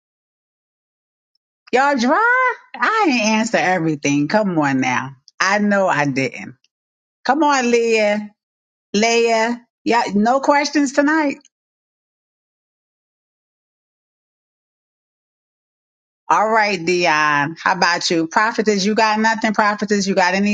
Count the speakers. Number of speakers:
one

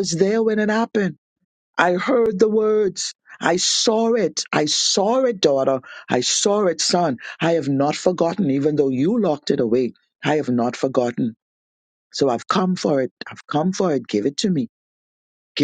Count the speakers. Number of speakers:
one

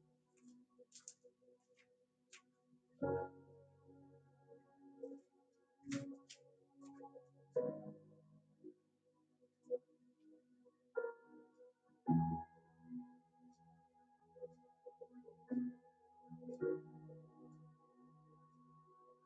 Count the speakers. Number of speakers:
zero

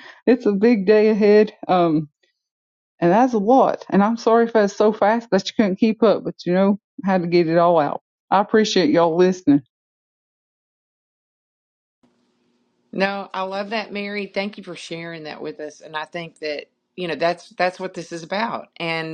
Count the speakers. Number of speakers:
two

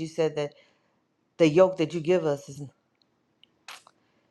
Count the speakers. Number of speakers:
one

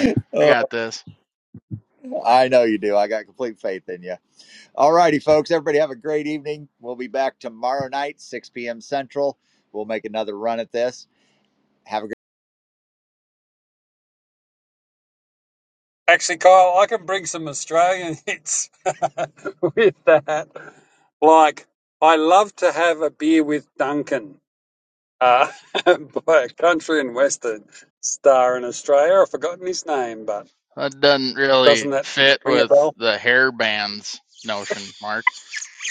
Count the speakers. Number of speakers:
three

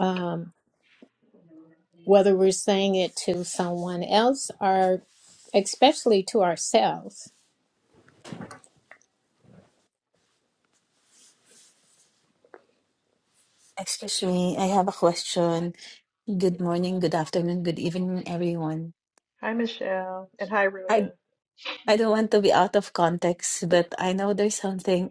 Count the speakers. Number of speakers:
three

